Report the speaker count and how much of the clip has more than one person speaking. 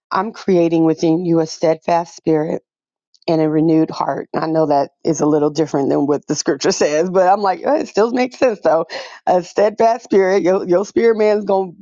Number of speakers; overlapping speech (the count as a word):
one, no overlap